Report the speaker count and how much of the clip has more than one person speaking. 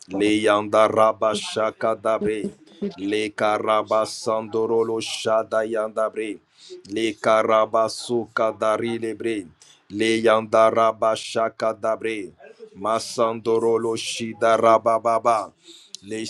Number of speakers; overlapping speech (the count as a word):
one, no overlap